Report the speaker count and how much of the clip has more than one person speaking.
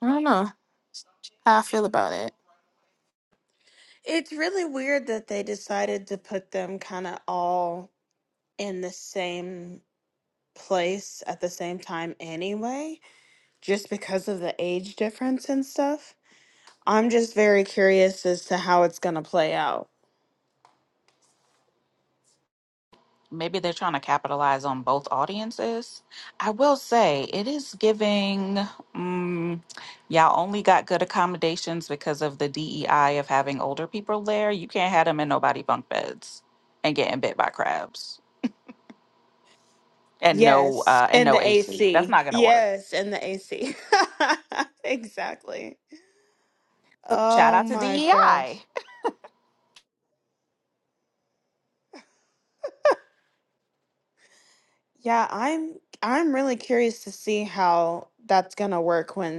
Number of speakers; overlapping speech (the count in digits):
3, about 5%